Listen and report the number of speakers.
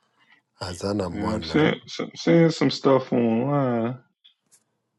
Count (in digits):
2